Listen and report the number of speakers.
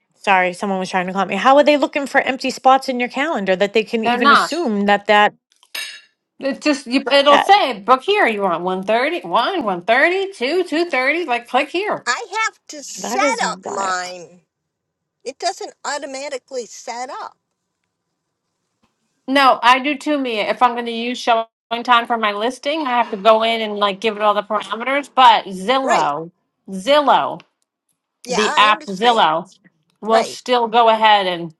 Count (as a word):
three